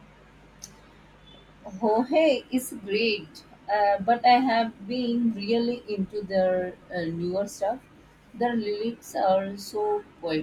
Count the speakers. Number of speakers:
1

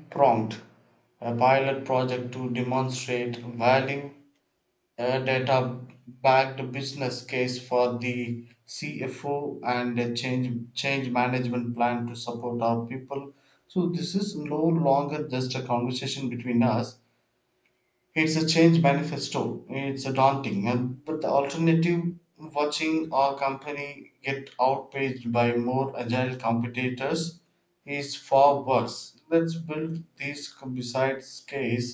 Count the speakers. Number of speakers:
1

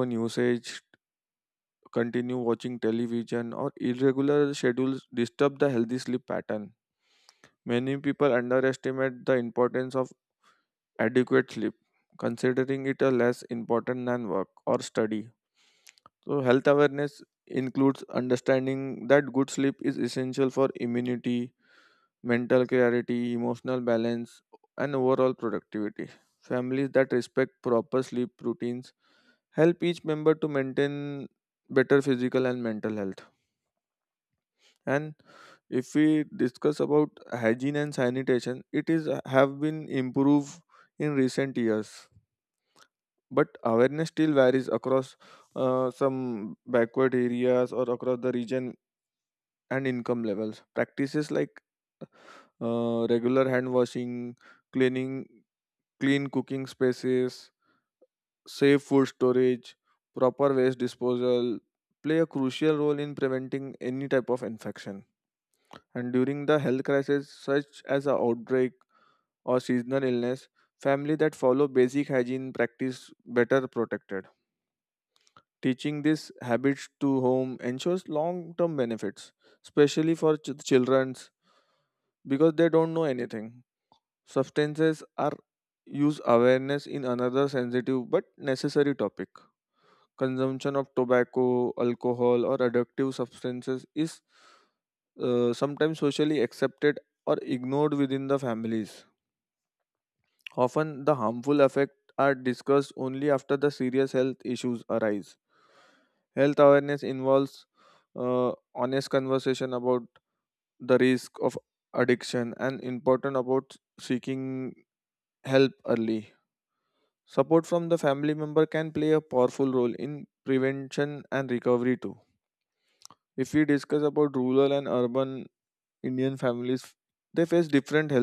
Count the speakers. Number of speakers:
1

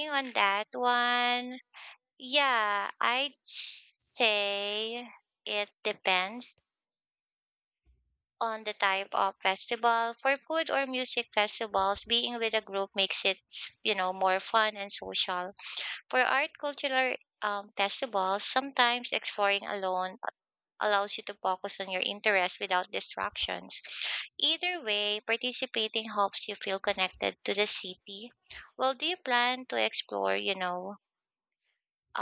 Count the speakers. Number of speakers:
1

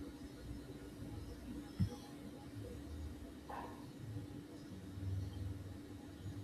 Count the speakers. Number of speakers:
0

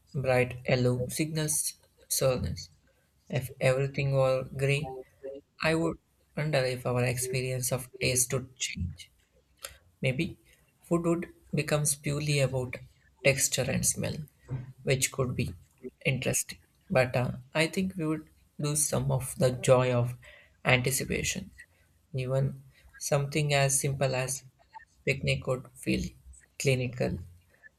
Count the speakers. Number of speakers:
1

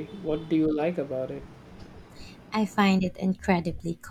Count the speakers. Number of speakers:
2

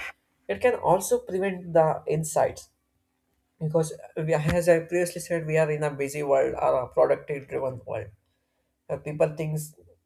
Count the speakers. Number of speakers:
1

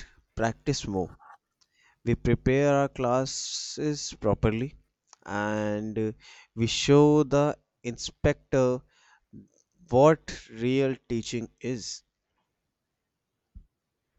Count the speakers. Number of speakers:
1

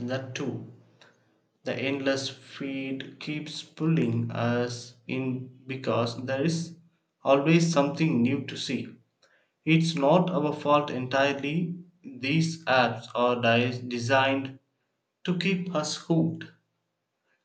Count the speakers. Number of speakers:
1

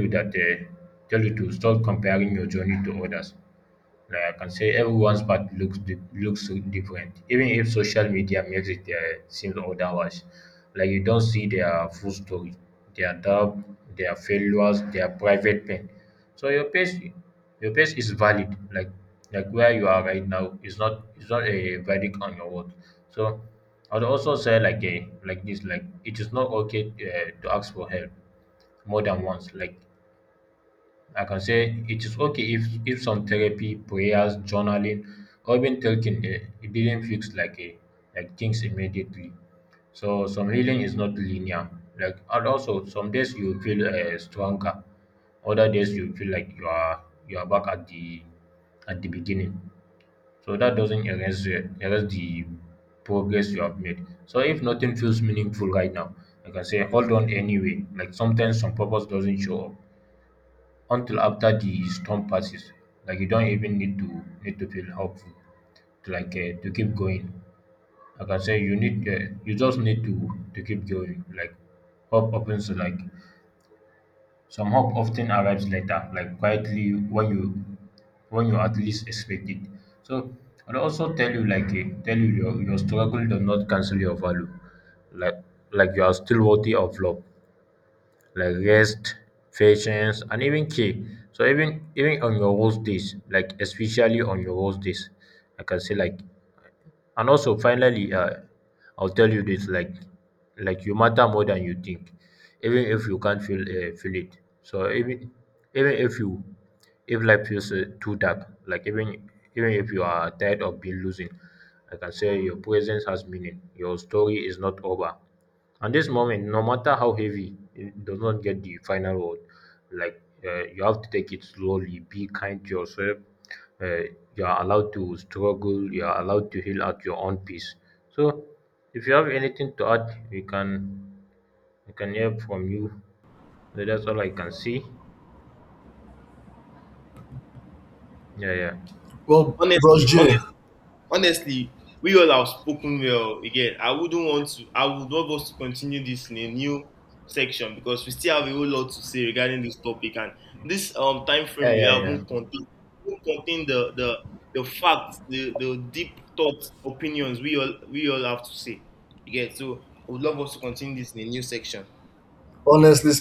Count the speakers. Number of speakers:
3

